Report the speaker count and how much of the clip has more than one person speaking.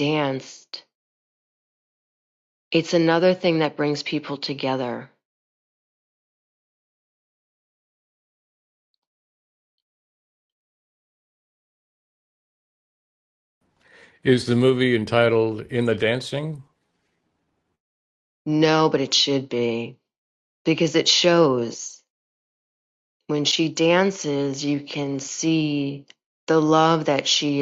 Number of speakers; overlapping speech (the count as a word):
two, no overlap